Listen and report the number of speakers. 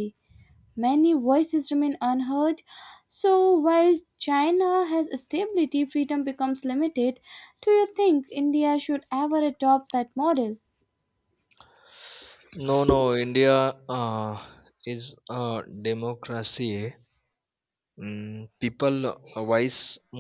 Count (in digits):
2